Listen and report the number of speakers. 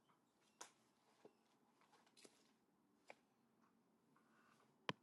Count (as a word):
zero